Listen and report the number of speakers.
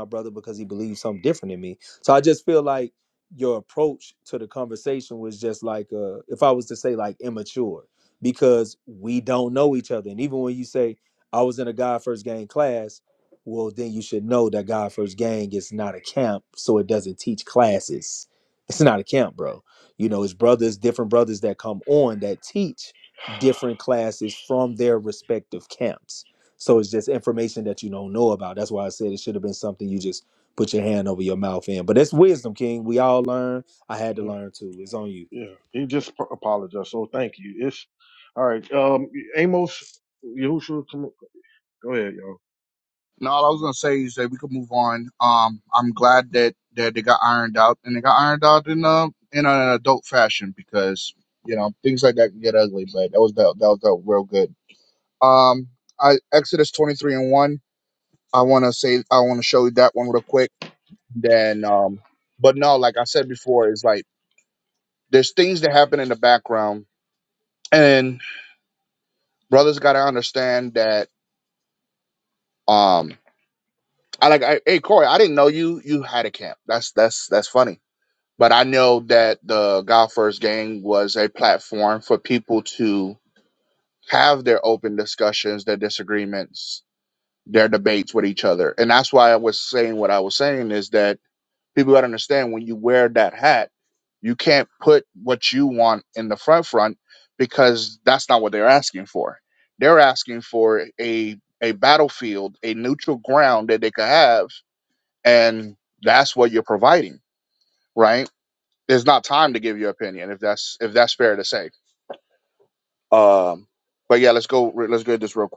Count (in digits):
3